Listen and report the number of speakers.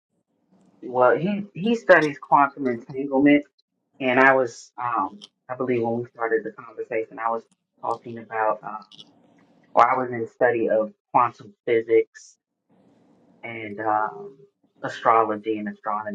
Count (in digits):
1